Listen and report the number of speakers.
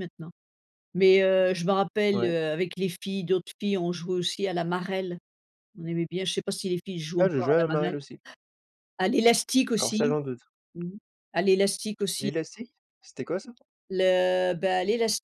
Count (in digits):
2